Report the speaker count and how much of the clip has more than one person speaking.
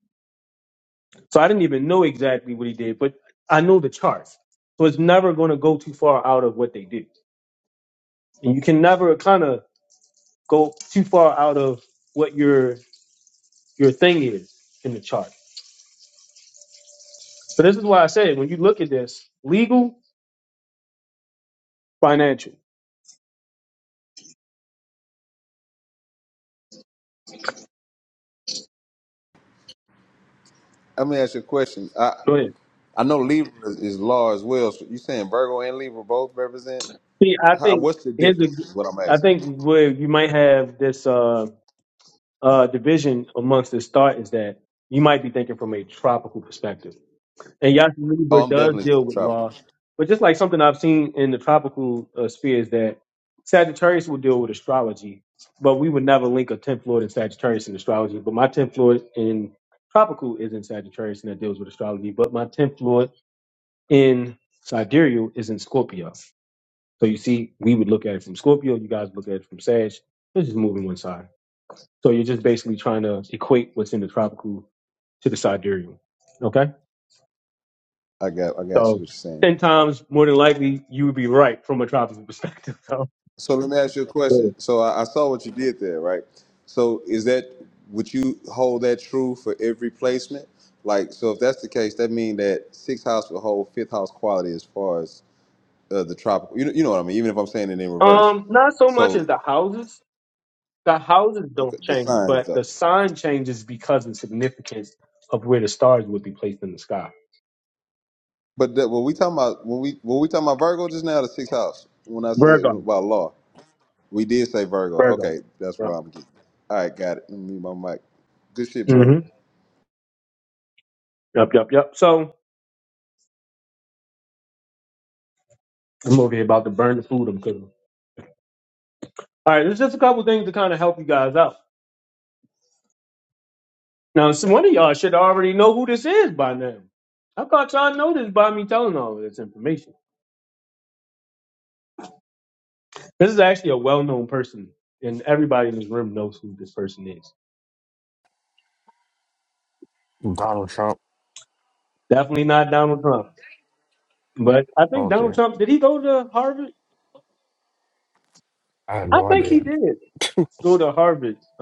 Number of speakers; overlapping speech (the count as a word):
three, about 4%